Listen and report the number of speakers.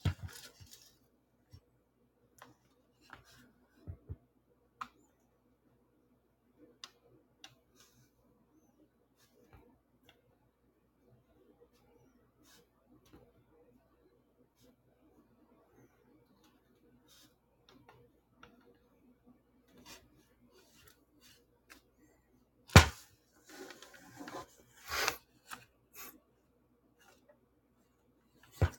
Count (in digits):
0